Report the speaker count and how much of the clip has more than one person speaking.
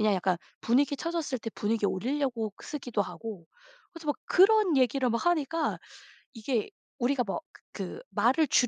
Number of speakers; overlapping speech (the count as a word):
one, no overlap